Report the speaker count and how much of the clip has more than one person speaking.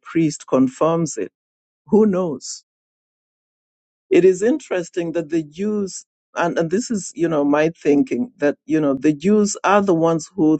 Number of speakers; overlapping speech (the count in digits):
1, no overlap